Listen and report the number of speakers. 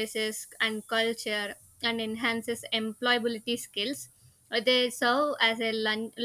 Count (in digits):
1